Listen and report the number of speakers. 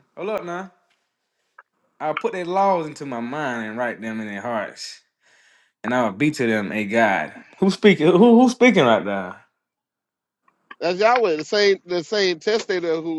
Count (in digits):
2